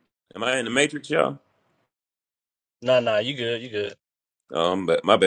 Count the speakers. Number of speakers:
2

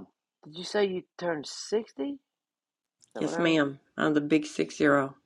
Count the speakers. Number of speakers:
2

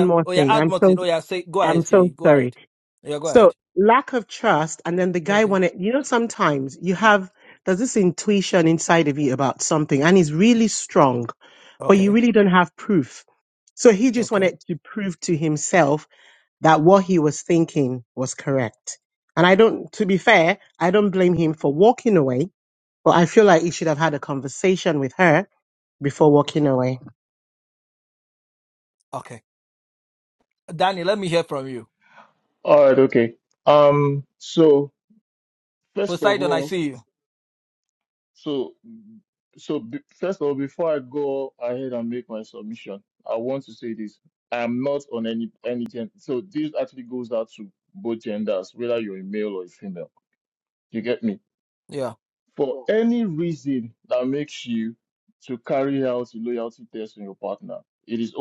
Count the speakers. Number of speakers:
3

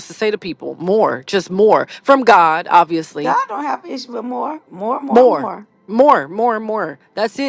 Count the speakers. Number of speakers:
2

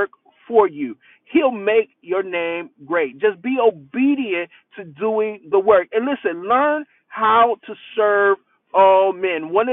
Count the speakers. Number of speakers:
1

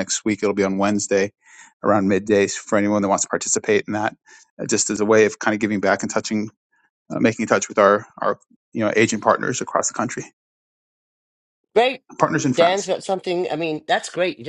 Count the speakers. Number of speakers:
2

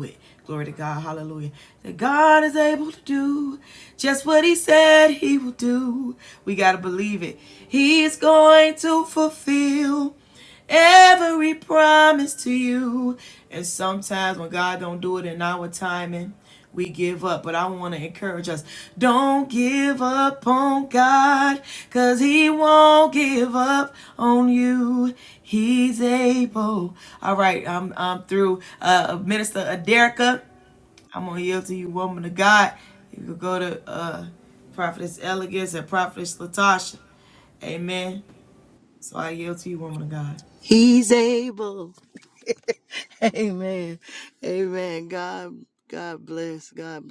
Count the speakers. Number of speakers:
2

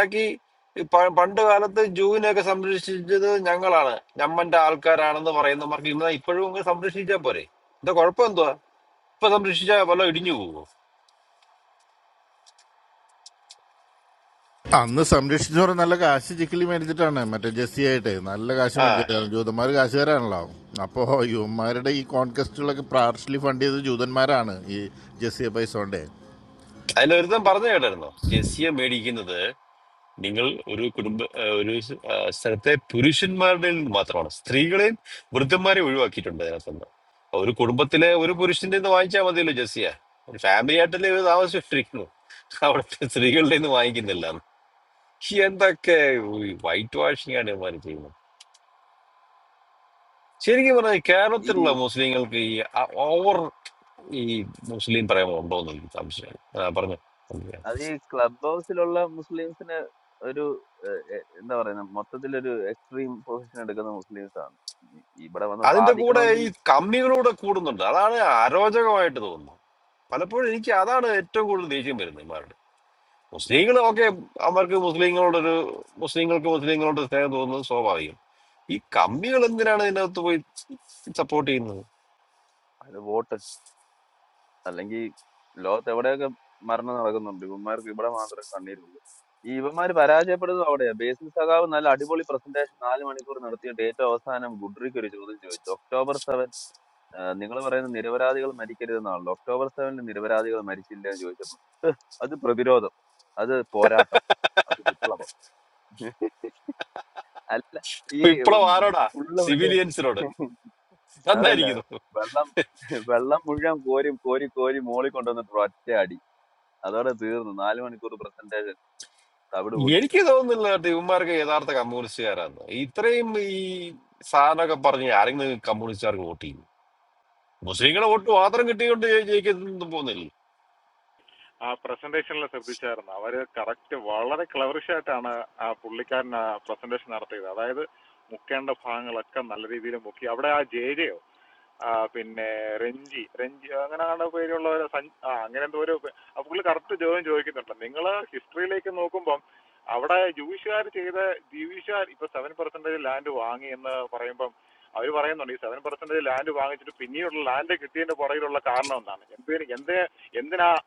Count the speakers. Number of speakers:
4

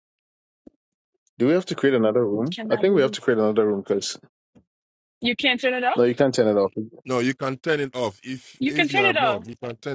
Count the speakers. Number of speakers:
3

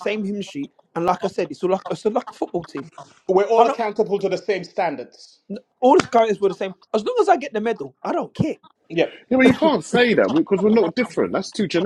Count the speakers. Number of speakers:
3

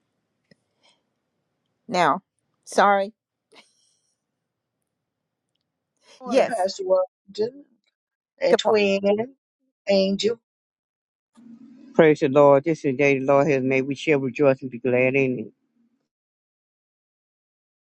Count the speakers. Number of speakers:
3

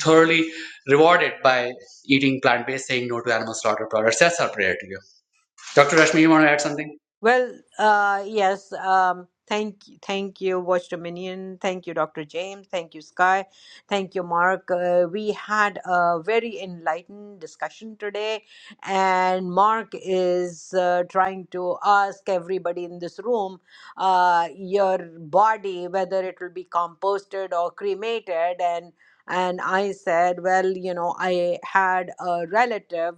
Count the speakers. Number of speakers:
2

